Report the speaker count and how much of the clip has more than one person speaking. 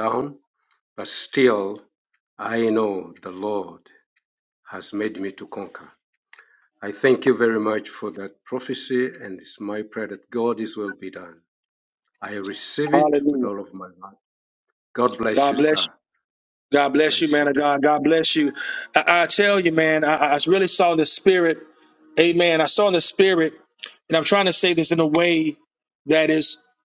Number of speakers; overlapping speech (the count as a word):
two, about 6%